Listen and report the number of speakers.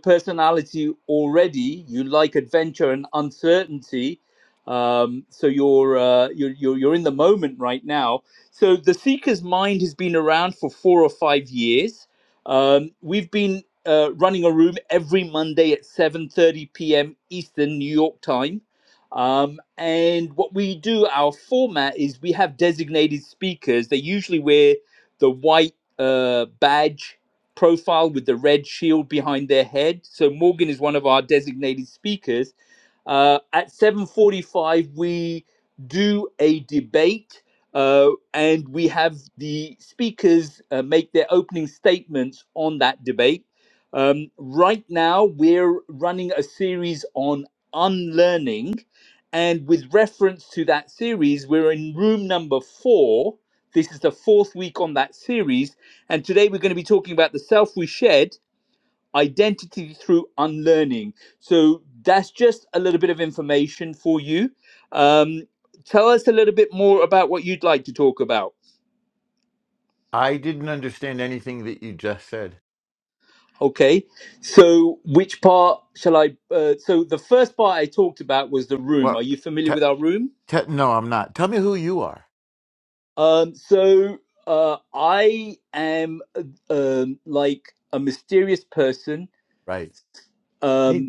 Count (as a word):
two